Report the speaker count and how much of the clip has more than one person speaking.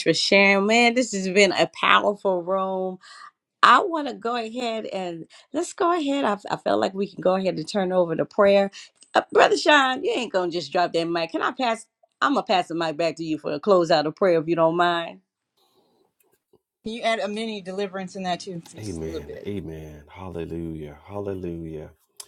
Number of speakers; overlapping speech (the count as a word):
three, about 3%